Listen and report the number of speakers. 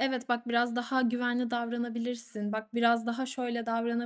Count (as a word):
one